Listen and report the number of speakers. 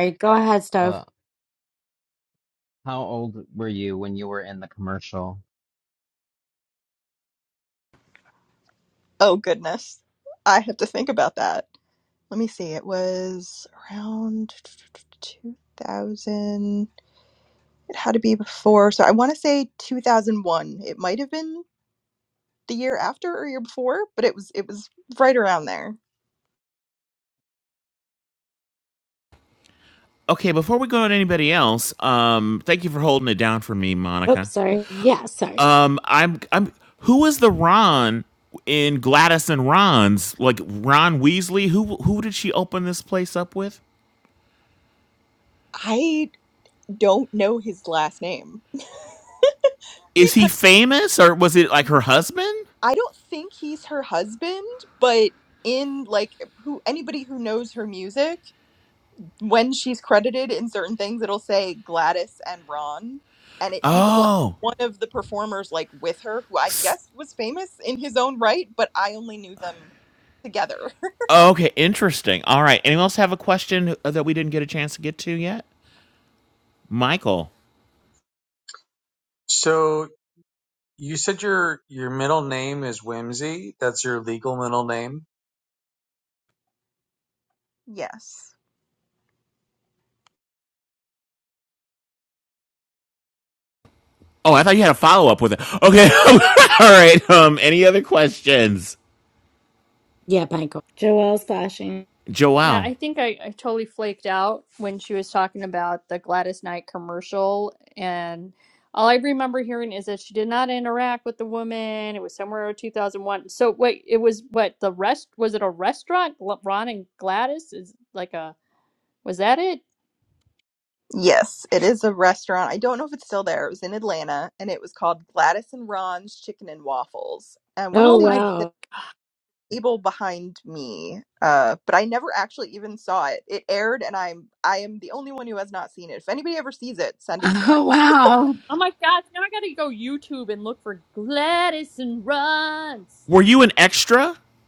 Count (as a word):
six